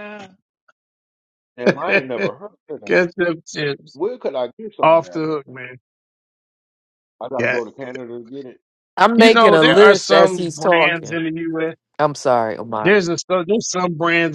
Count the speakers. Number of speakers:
3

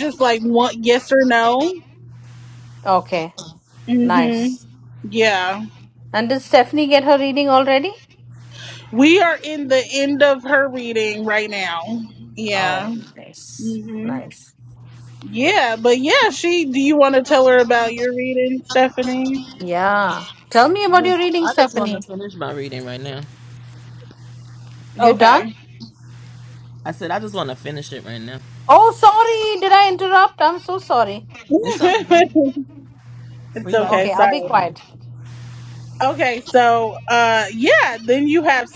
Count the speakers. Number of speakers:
3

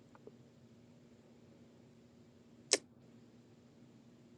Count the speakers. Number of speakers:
0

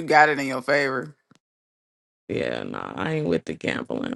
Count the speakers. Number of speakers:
2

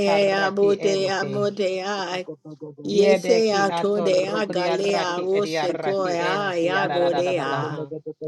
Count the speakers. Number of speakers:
2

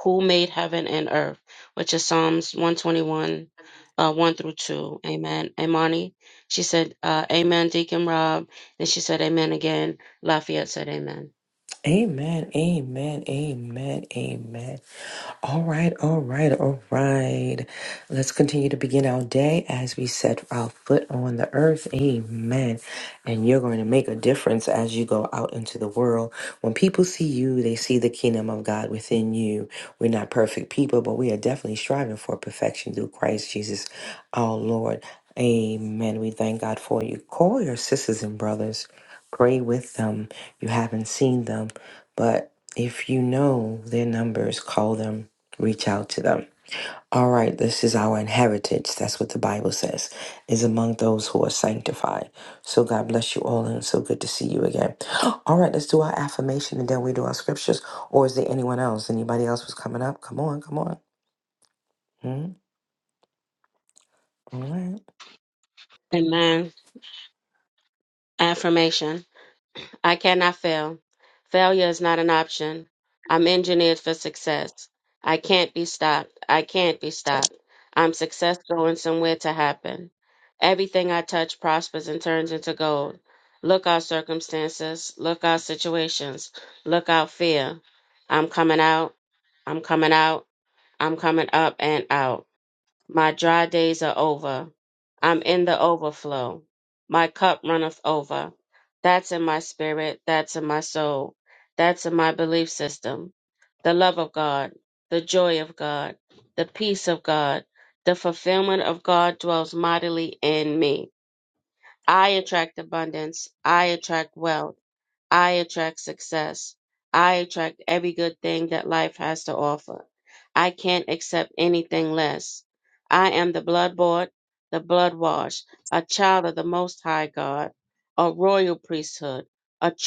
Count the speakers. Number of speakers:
2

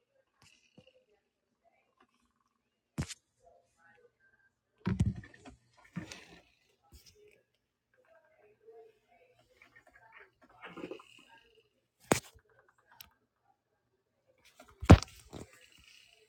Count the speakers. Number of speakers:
0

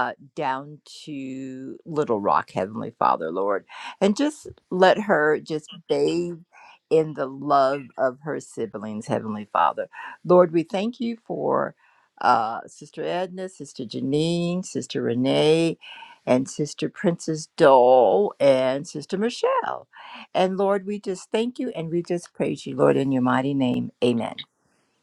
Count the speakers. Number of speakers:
1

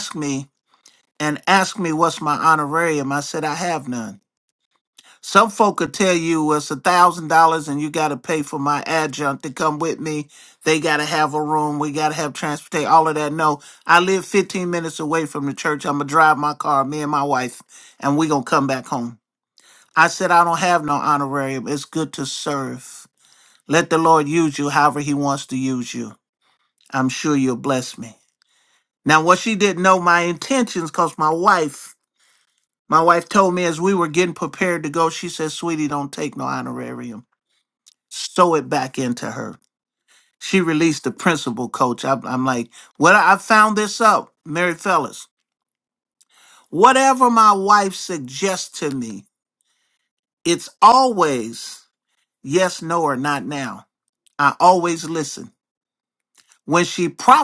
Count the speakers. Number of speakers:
1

